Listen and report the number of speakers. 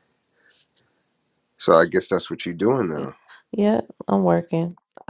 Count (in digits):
2